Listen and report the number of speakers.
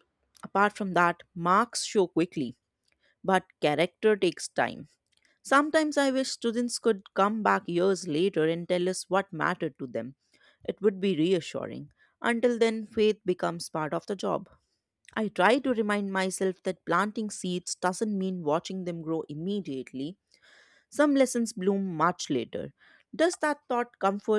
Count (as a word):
one